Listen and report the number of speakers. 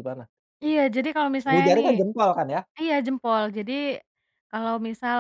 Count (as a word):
two